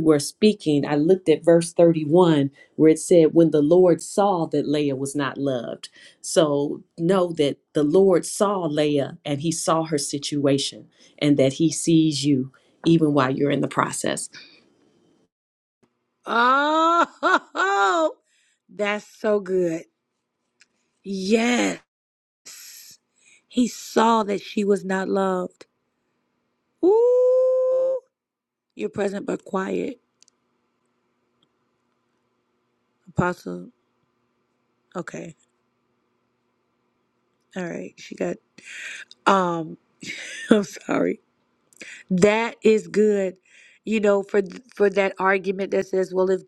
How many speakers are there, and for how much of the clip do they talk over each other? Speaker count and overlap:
two, no overlap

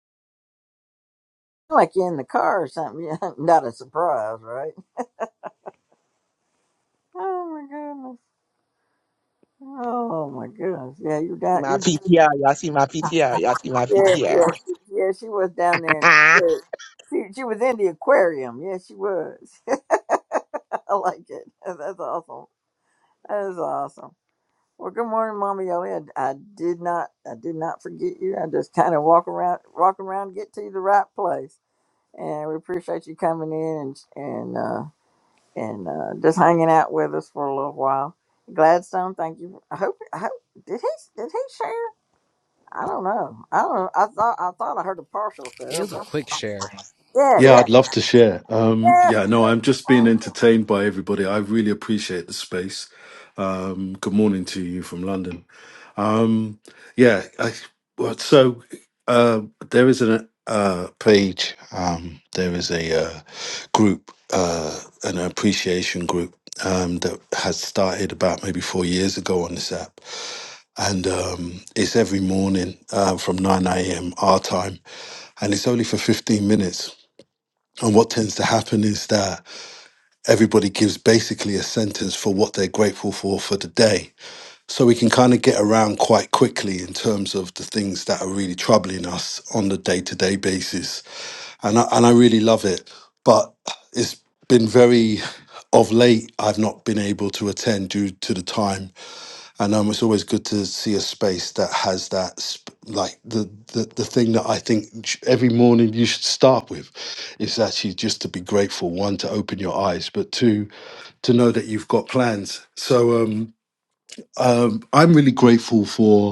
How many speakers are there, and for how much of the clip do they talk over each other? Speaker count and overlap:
four, about 3%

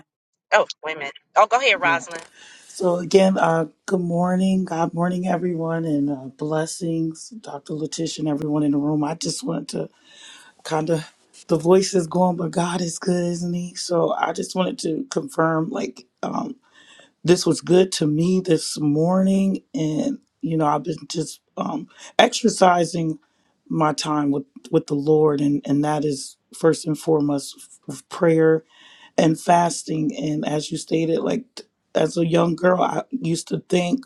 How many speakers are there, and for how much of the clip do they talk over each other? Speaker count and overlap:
two, about 1%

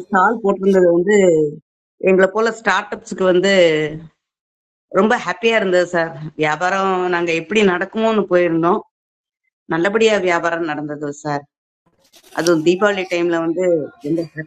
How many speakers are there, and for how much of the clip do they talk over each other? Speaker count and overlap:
one, no overlap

